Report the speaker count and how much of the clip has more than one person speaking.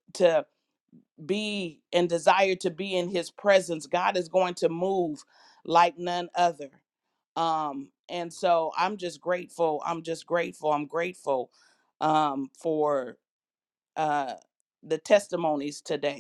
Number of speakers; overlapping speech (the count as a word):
one, no overlap